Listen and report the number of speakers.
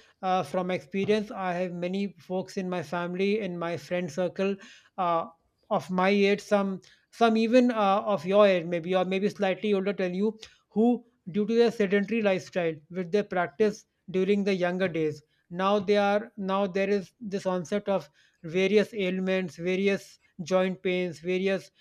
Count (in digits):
1